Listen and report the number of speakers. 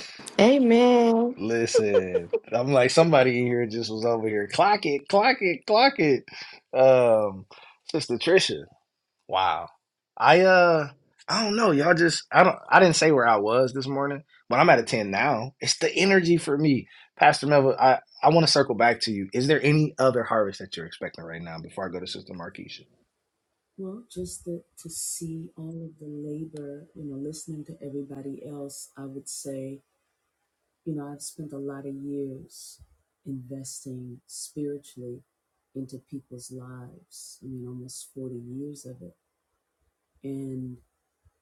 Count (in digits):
3